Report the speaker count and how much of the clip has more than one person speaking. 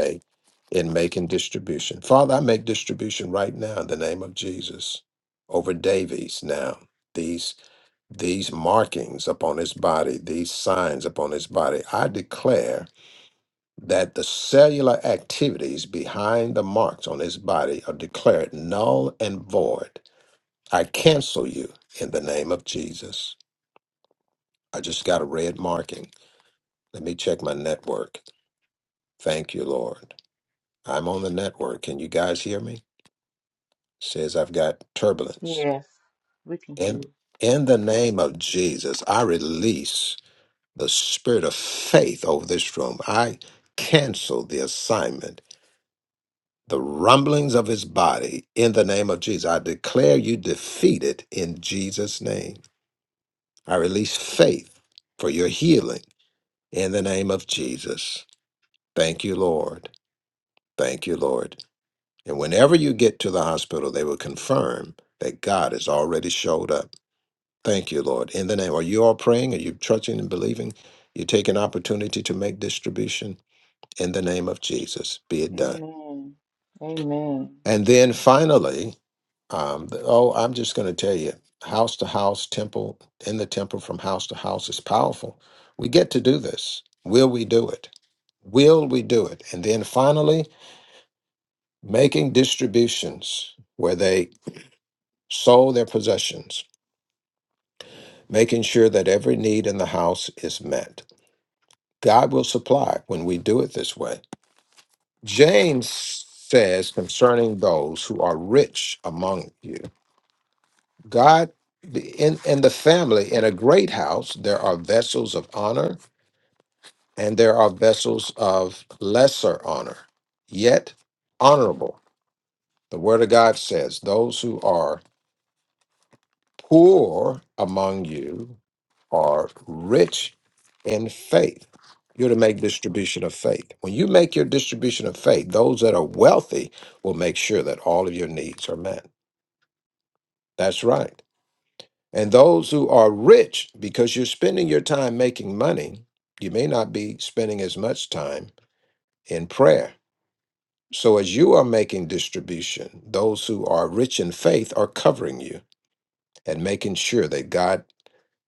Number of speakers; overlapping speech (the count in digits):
2, under 1%